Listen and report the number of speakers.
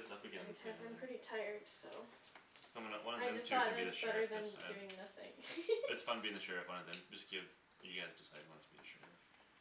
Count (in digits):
2